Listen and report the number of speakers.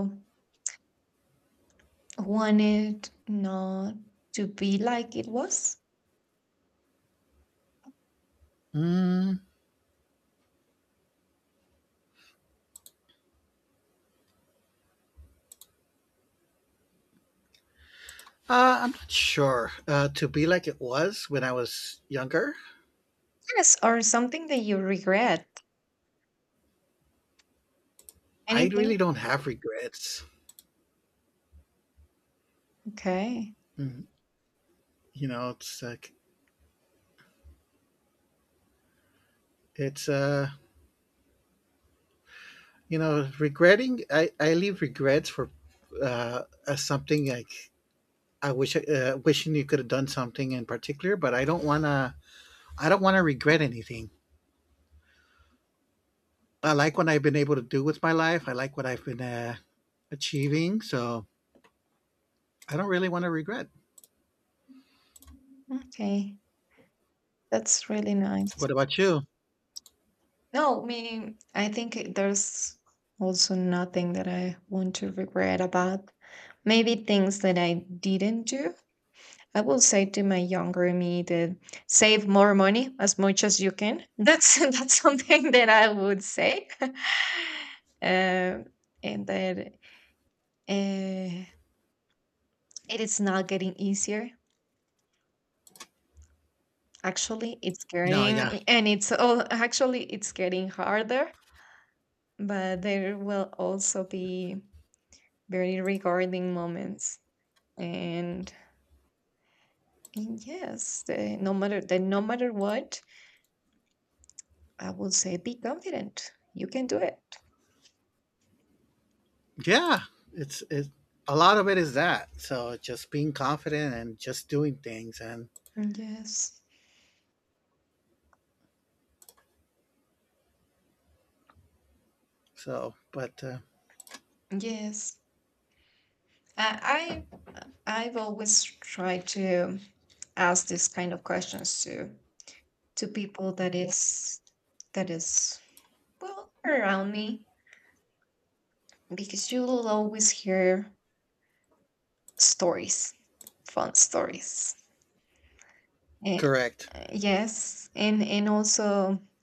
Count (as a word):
two